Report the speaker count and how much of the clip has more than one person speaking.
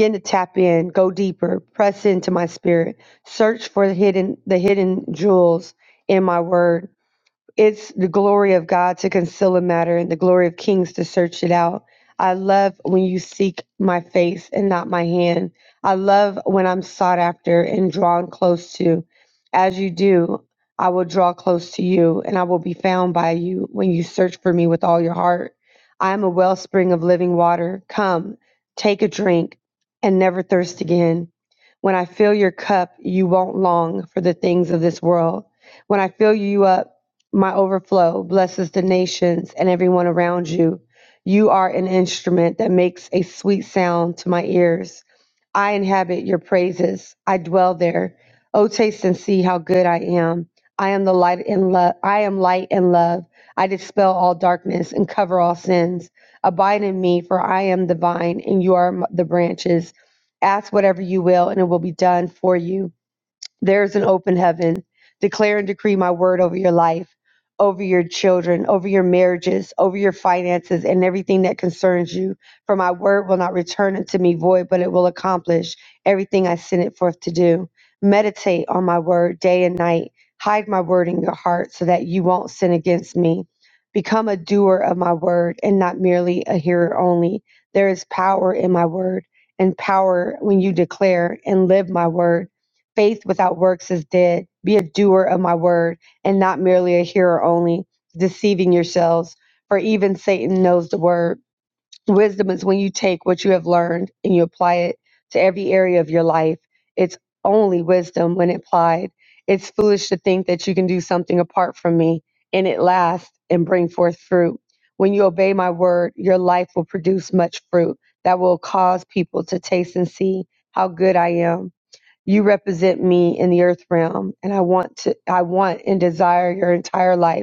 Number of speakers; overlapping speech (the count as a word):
one, no overlap